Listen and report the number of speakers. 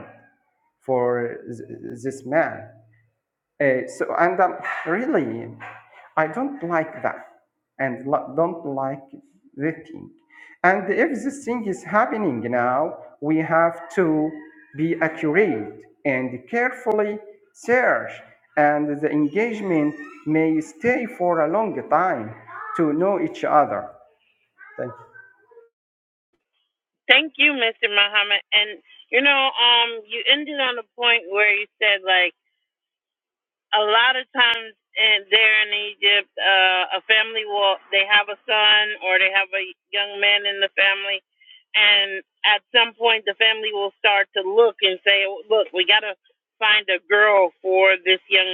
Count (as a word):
two